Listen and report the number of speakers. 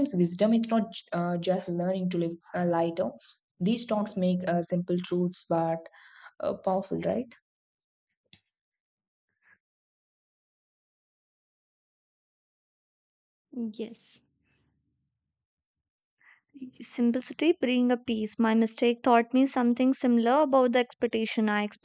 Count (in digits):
2